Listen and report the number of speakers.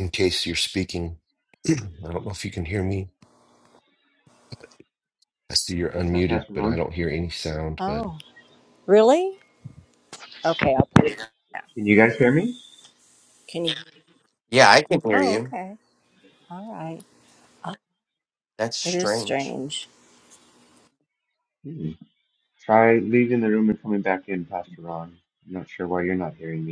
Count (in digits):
4